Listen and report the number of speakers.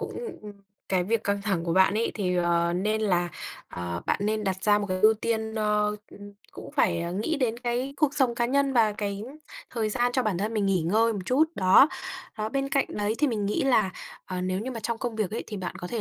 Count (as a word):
one